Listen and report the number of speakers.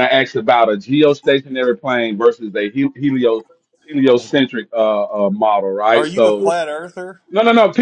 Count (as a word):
two